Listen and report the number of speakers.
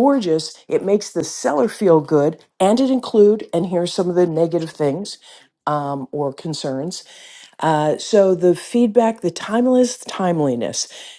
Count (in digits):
1